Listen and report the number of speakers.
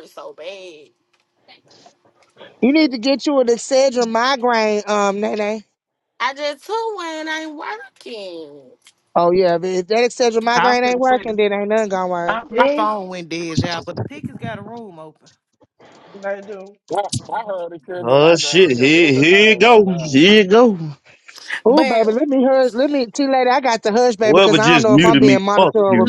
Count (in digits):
6